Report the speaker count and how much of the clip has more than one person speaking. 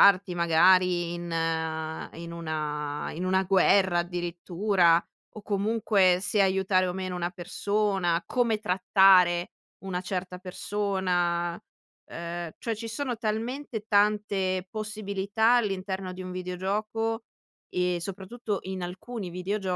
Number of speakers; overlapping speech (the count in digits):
1, no overlap